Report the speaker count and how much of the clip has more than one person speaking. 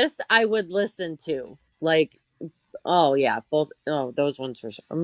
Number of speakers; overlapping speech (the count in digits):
1, no overlap